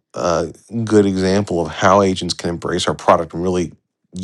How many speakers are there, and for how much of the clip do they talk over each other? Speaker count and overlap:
1, no overlap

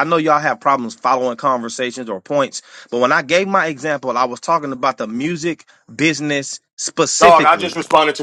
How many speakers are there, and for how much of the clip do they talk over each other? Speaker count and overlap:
2, about 7%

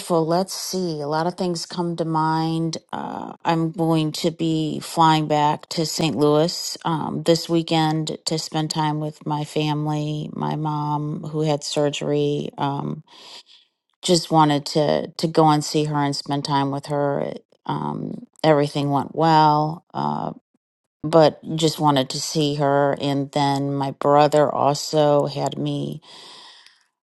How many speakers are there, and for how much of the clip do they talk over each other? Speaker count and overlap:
1, no overlap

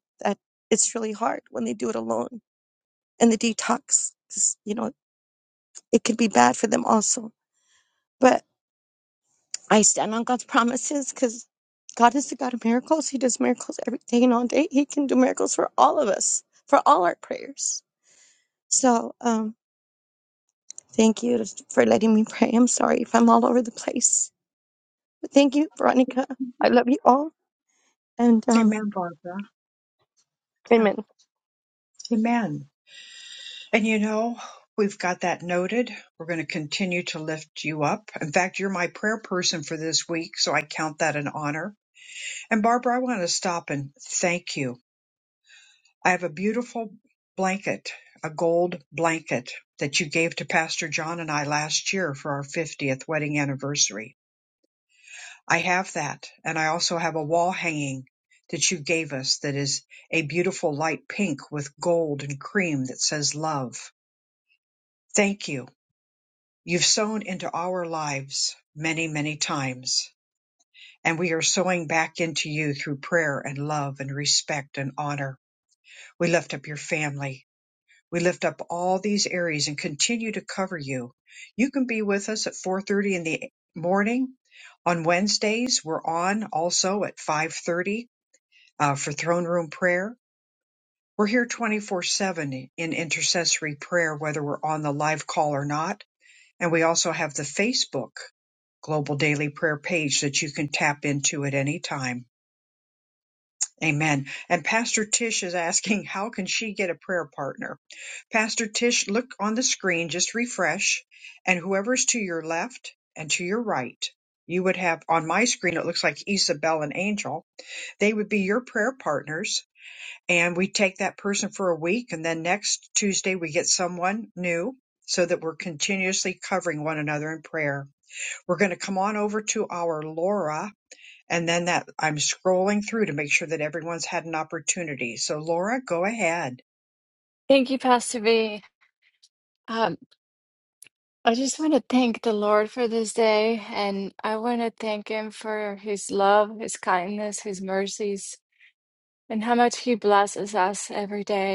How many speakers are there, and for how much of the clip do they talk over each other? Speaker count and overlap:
3, under 1%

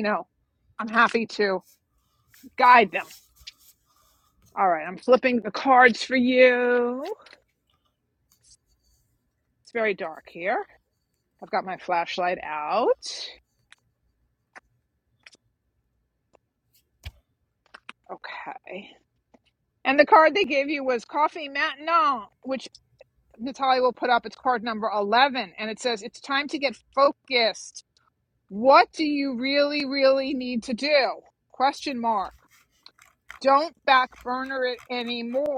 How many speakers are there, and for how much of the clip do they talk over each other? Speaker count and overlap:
1, no overlap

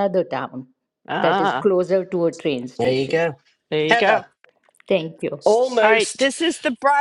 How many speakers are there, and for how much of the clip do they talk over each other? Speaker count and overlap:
3, about 22%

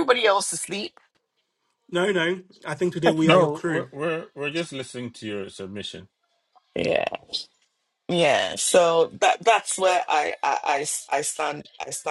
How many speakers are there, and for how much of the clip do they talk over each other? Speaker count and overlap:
3, about 5%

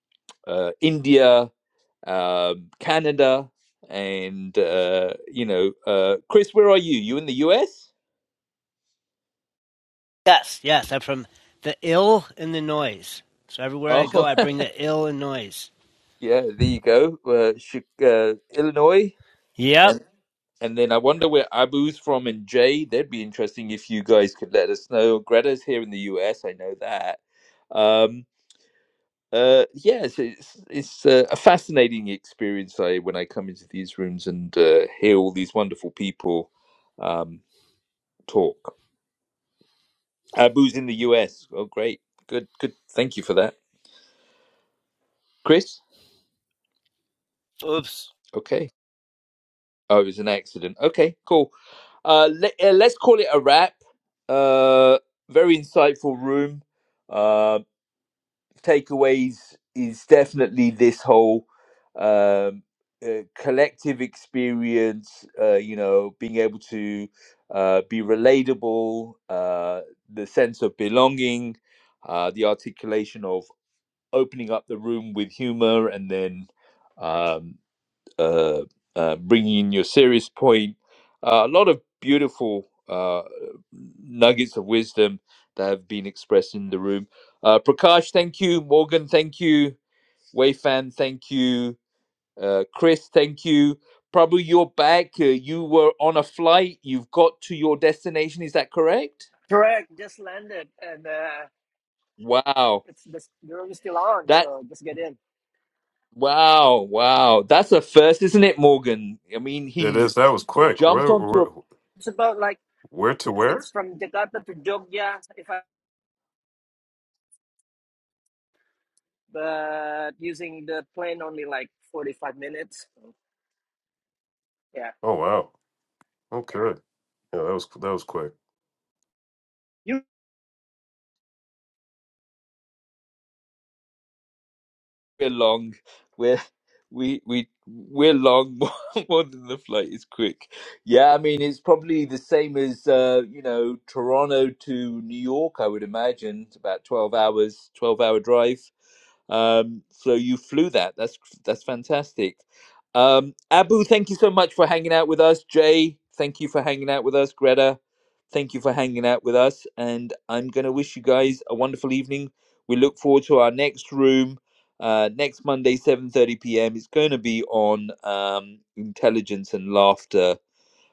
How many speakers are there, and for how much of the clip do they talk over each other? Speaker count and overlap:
4, about 1%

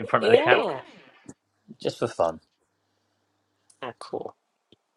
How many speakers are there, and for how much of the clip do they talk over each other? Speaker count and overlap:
2, about 10%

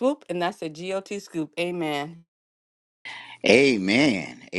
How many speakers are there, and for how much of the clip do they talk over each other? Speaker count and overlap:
2, no overlap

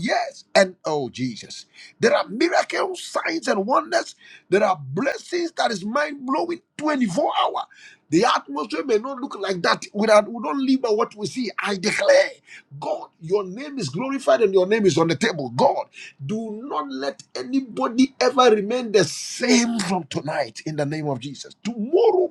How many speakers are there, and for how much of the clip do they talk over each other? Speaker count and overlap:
1, no overlap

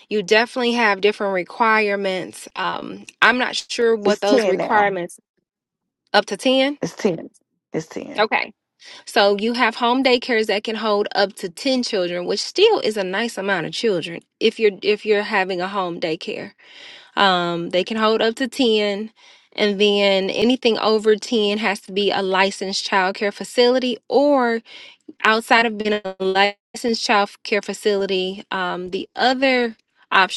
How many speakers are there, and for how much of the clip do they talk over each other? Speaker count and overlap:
2, about 3%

